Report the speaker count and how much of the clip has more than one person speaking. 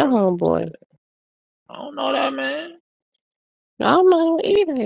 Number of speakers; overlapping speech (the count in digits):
2, about 9%